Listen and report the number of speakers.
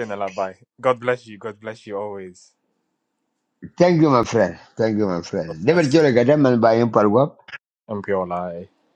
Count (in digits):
2